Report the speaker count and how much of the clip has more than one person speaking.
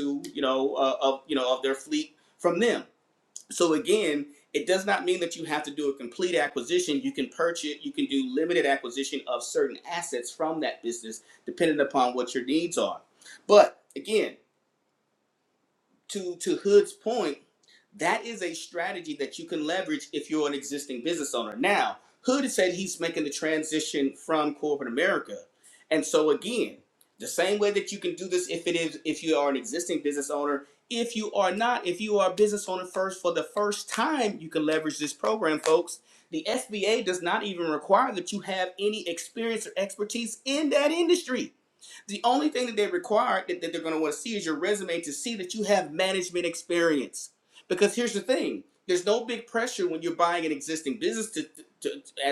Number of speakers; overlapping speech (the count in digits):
1, no overlap